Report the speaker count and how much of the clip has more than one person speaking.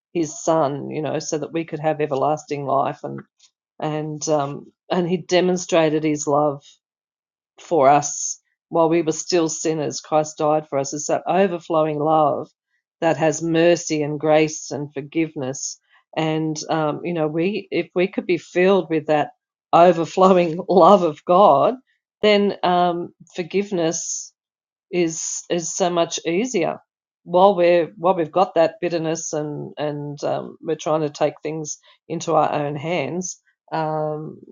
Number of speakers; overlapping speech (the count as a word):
one, no overlap